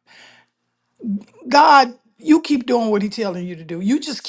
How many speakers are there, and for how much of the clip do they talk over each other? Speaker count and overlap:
one, no overlap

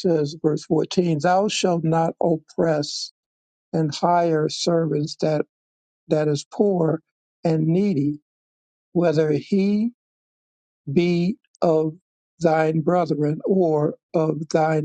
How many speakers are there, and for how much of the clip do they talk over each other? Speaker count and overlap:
one, no overlap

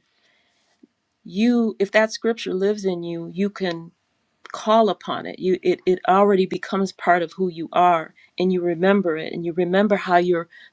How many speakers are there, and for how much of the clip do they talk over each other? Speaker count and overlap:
one, no overlap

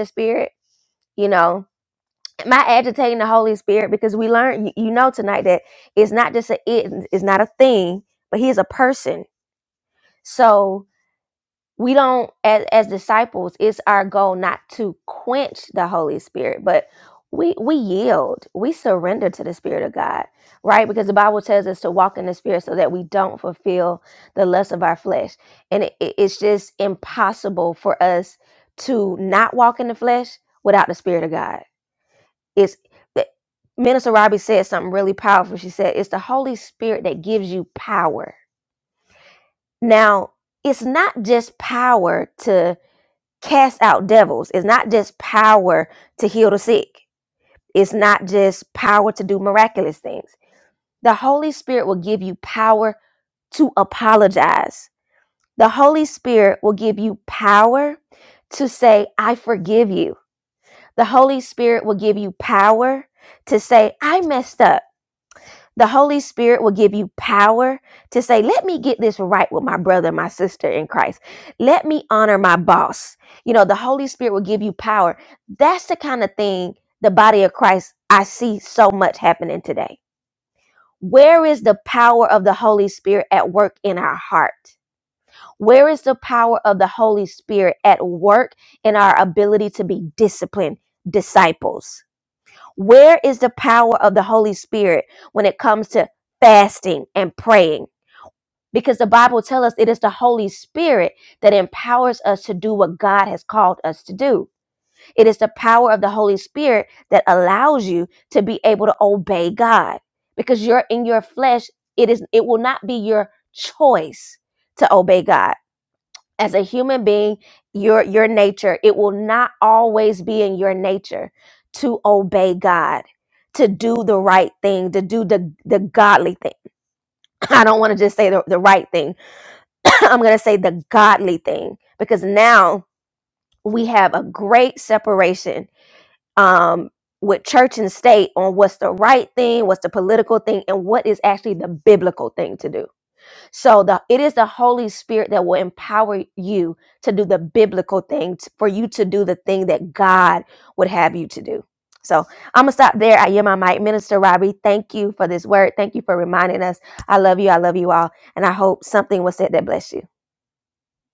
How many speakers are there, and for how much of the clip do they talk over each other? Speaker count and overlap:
one, no overlap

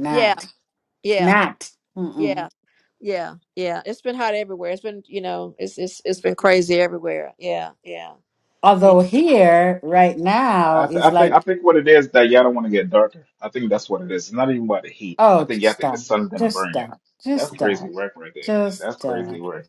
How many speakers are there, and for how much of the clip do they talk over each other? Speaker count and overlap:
three, about 20%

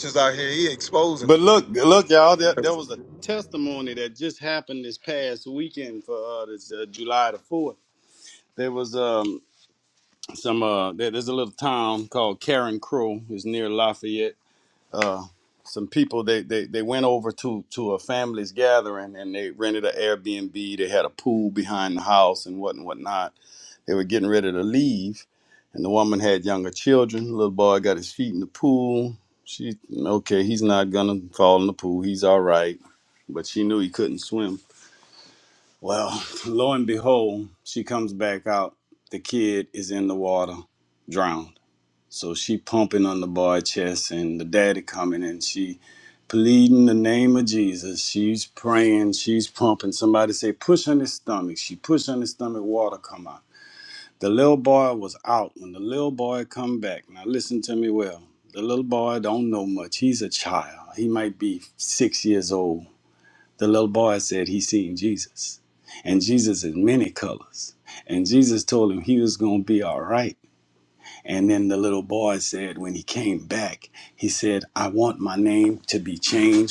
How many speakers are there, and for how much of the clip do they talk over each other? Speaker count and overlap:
two, under 1%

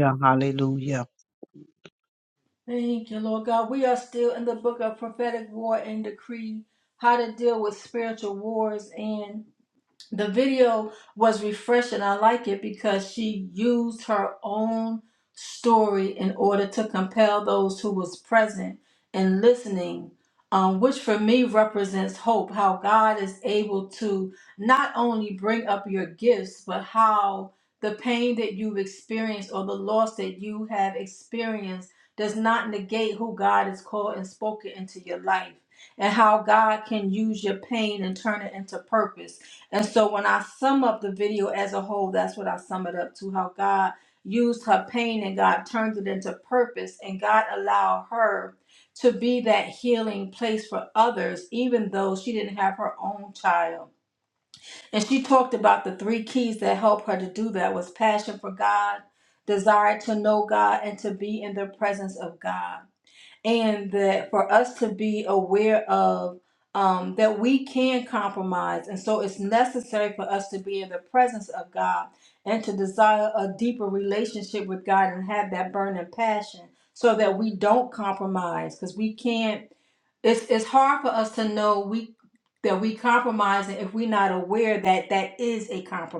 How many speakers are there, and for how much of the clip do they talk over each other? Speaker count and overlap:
two, no overlap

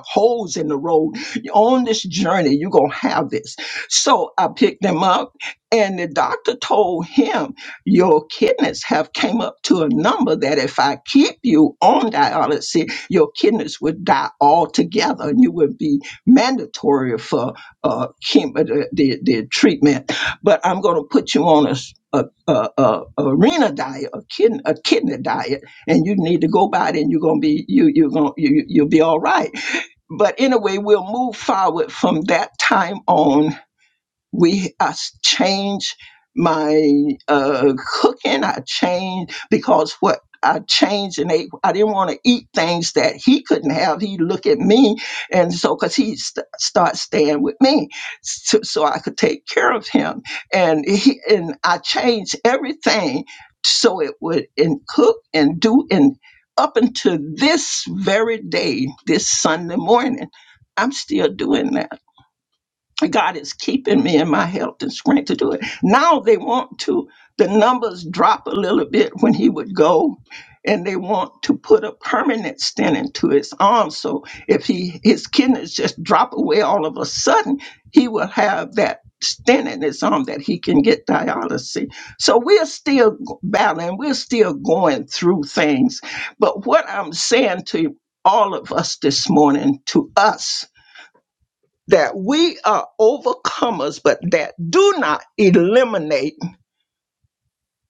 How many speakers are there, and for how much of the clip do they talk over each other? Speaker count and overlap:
one, no overlap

